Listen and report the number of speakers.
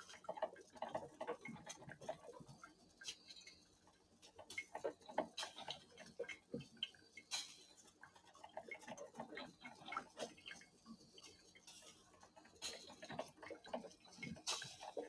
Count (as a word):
zero